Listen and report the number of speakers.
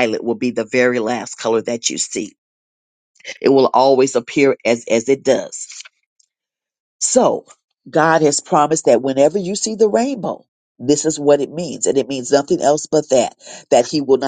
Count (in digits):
1